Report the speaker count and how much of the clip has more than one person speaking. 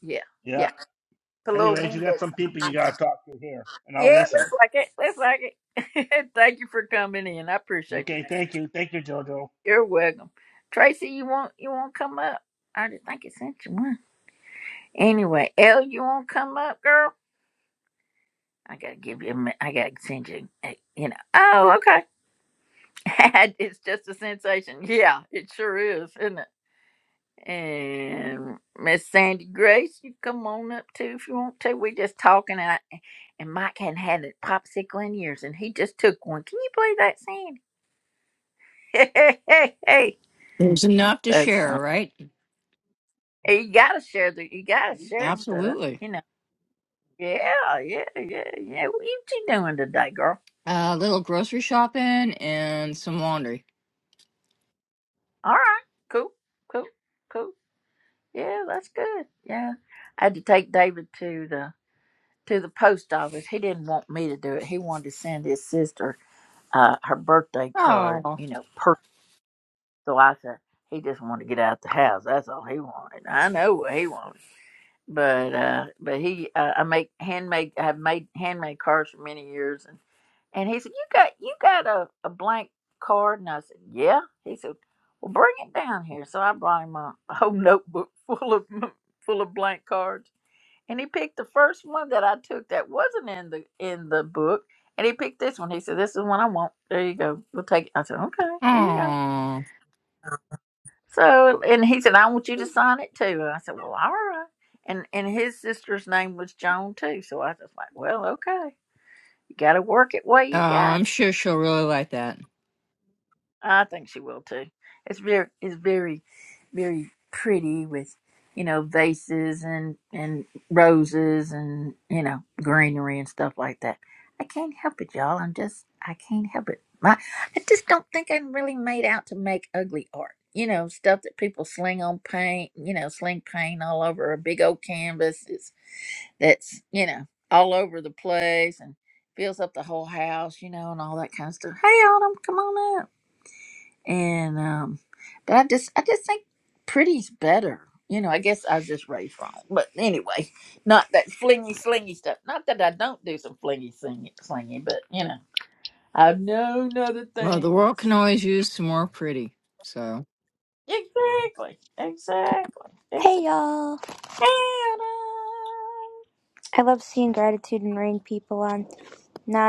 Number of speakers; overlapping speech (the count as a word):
four, about 3%